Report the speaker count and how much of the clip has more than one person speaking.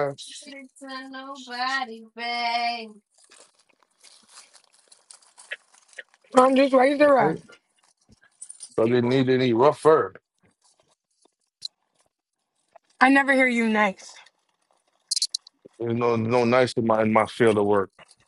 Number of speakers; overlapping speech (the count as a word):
three, about 1%